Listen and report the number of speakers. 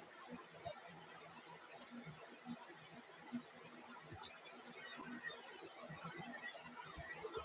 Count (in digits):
0